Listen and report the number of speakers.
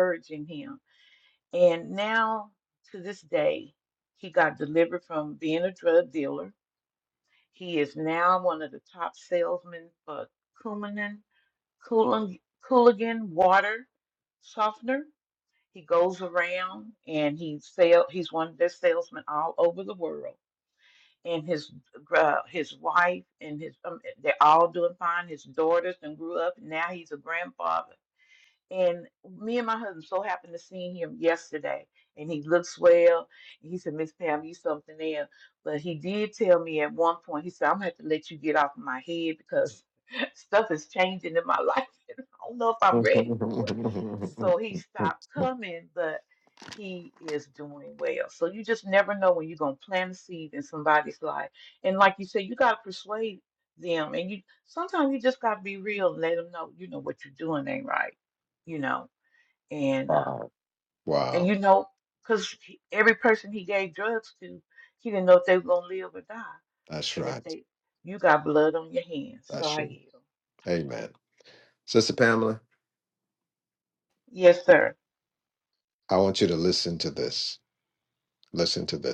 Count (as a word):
two